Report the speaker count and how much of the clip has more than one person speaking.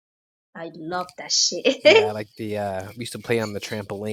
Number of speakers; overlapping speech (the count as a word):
two, no overlap